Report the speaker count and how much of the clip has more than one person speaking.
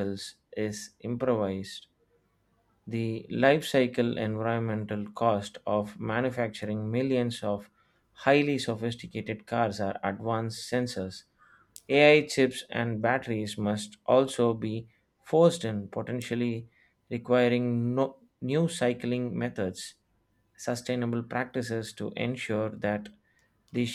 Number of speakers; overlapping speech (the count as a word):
one, no overlap